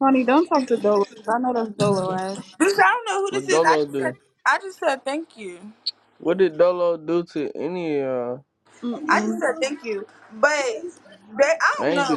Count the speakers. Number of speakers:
three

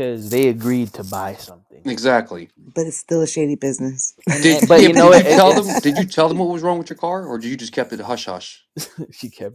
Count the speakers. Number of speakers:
three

